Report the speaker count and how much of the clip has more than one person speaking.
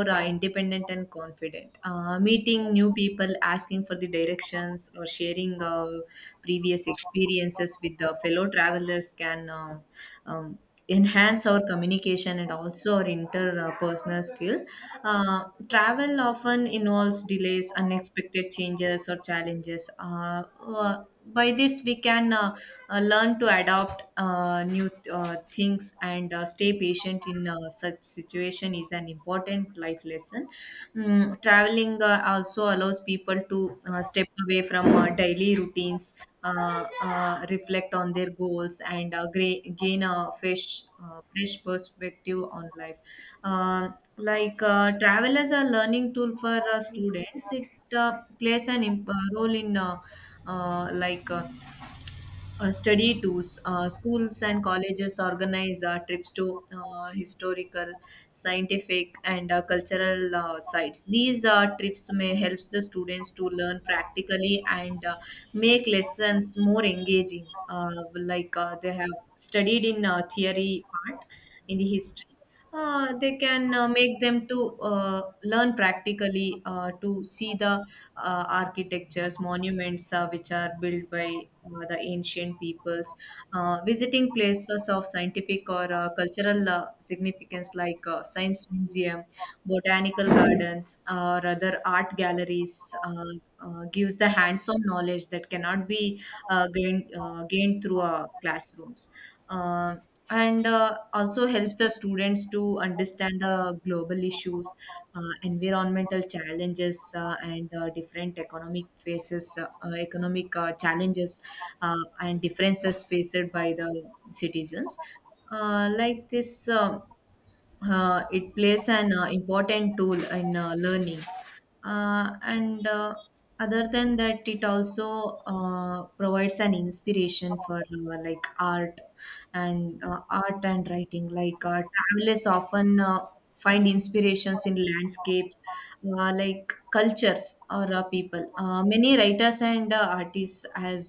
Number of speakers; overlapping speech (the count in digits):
1, no overlap